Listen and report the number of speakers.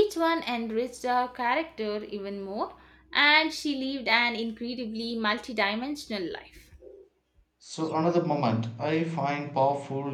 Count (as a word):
two